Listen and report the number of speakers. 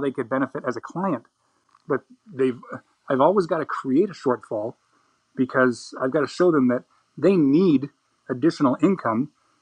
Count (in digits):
1